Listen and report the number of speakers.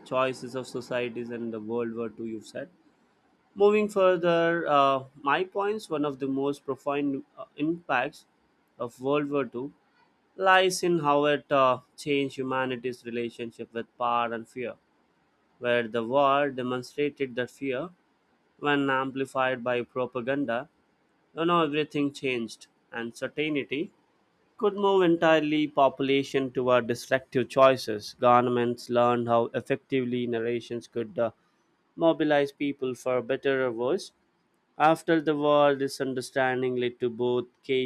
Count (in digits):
1